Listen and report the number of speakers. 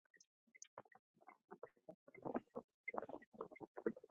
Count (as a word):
zero